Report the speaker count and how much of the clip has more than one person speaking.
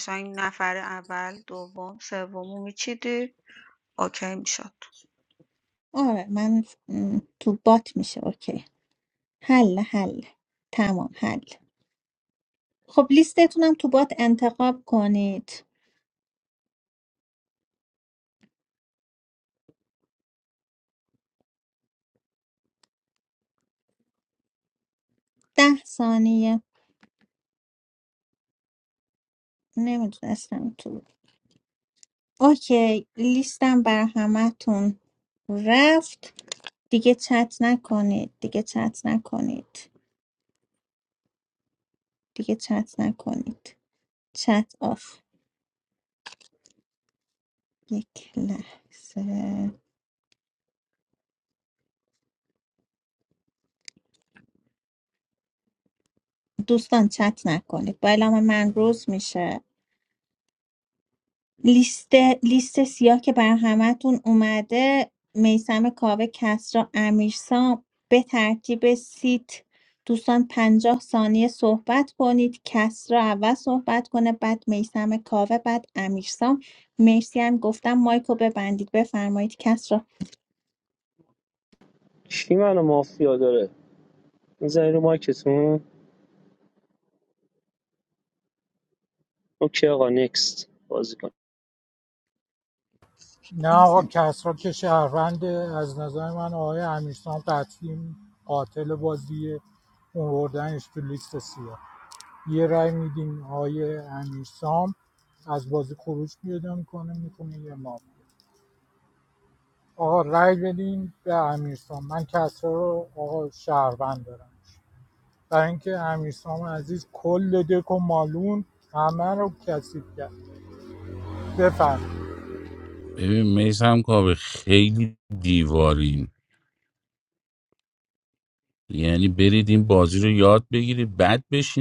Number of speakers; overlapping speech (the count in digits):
5, under 1%